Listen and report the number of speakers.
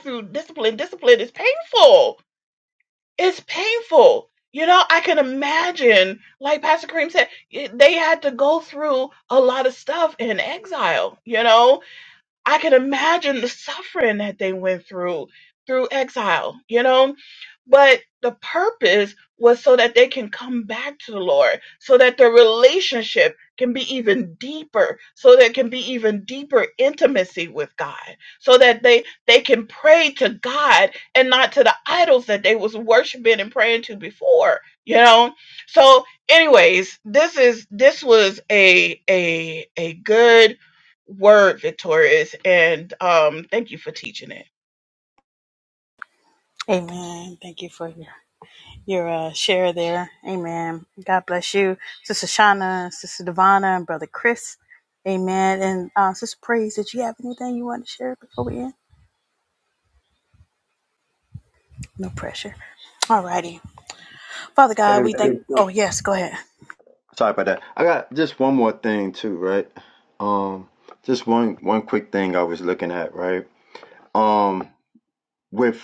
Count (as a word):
three